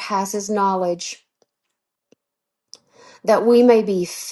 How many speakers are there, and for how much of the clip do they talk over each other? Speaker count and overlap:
1, no overlap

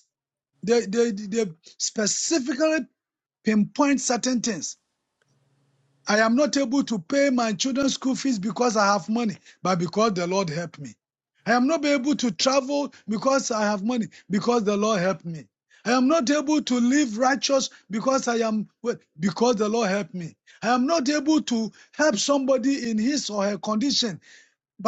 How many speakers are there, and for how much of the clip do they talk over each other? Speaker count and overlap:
1, no overlap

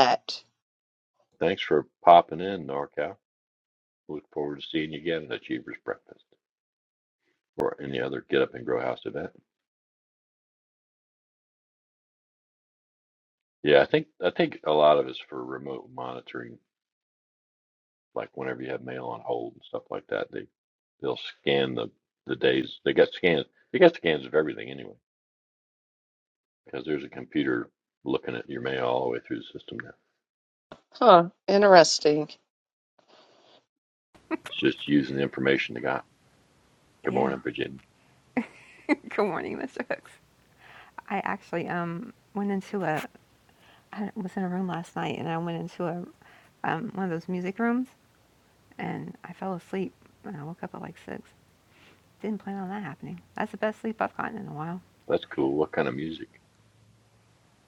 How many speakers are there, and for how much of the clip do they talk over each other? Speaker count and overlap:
3, about 1%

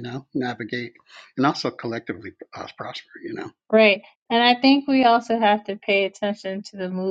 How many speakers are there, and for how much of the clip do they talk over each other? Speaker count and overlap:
2, no overlap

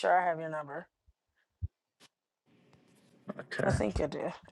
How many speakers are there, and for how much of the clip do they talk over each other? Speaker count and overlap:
1, no overlap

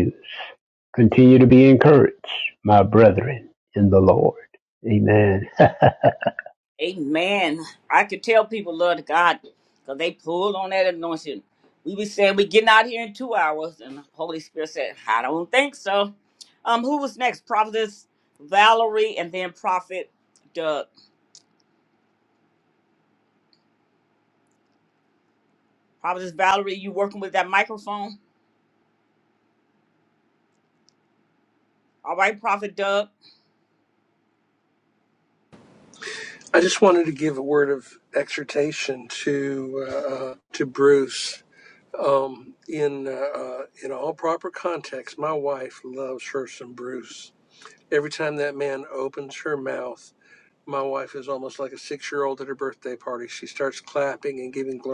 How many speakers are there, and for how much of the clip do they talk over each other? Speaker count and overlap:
3, no overlap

